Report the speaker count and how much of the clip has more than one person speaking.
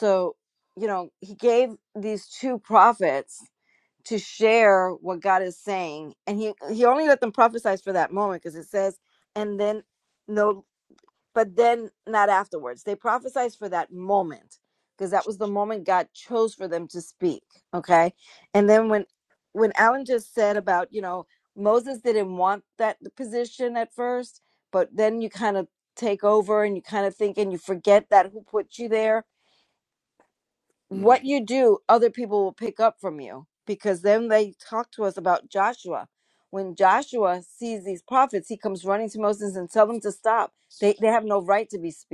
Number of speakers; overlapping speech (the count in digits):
1, no overlap